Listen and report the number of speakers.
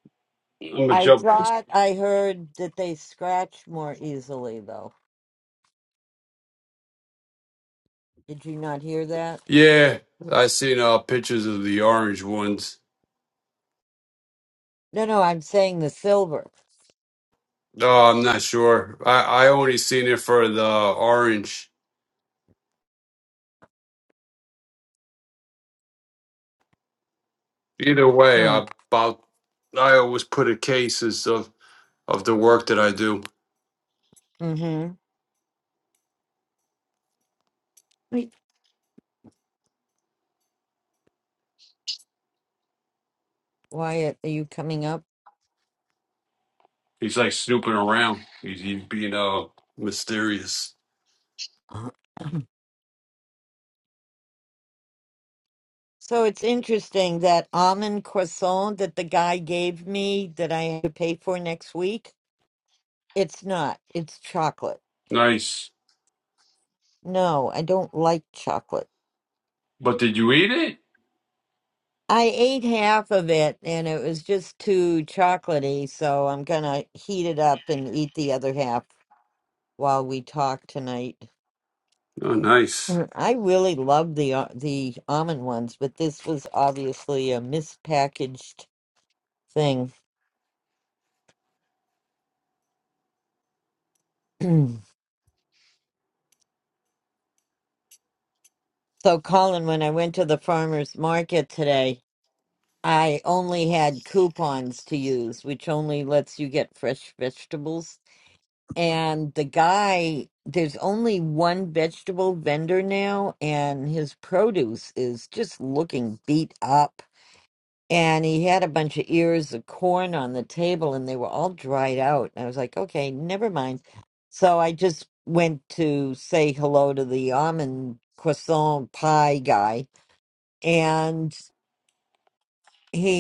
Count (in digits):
2